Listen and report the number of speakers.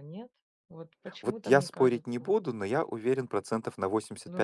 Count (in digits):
2